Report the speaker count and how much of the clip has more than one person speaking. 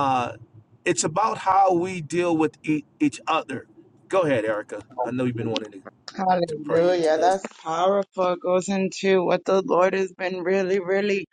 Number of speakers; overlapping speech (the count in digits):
2, about 7%